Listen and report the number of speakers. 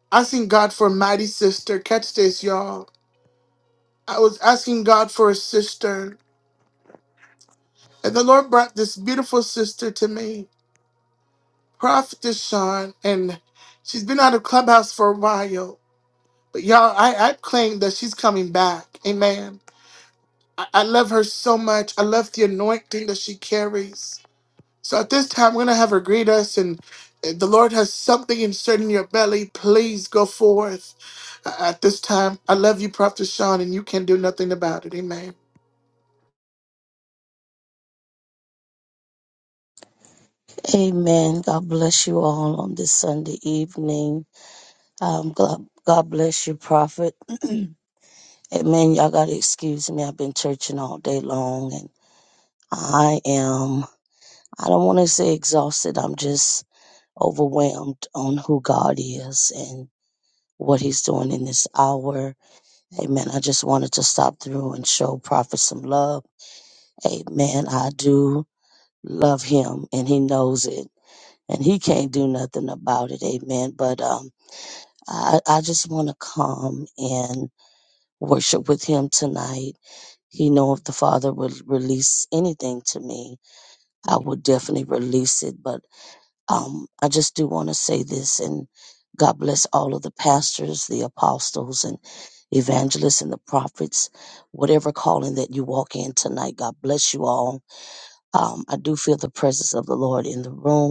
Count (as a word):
two